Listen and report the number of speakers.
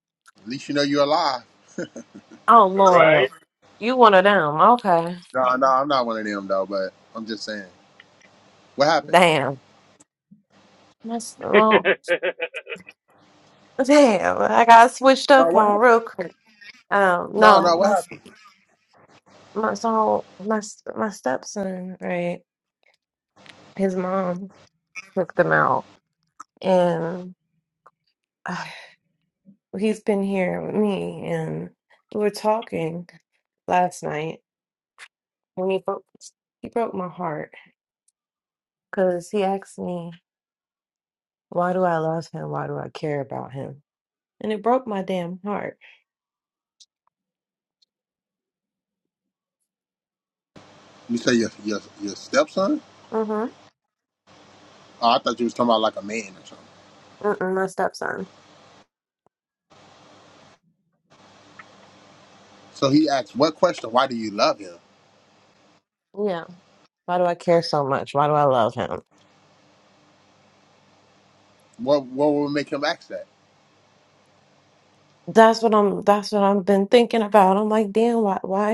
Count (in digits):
3